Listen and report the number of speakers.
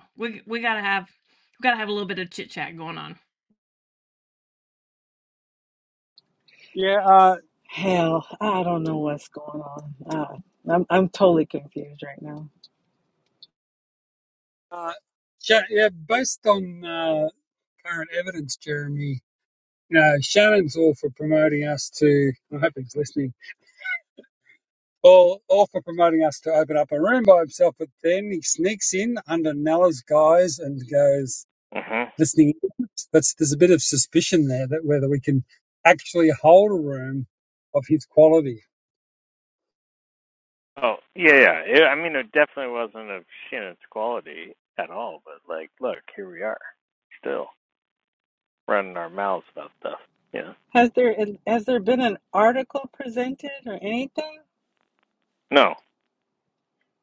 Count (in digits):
4